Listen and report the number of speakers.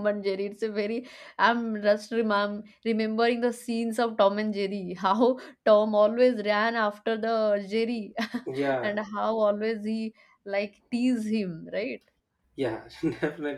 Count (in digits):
2